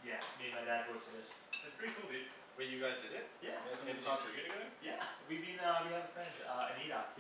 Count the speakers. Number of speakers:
three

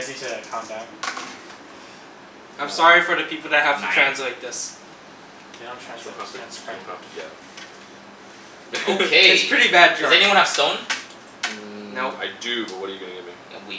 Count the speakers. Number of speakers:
four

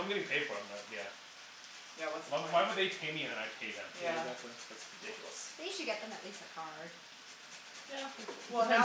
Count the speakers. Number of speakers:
four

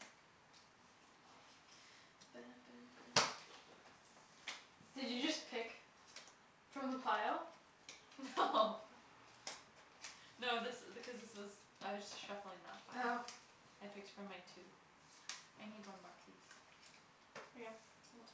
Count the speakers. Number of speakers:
two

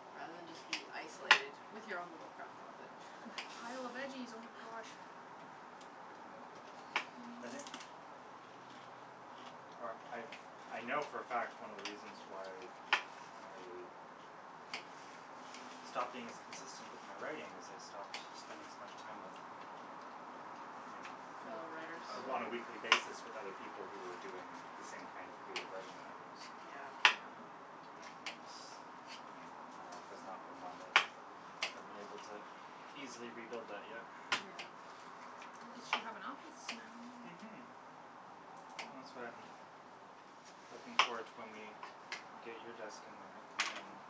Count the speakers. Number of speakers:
three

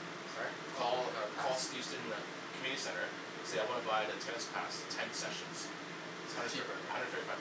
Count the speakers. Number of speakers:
two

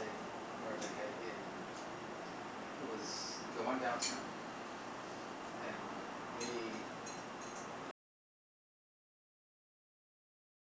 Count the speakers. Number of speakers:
one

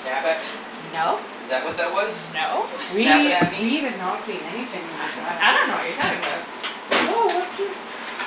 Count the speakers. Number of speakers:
three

